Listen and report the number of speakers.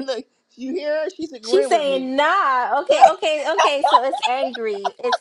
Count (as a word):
two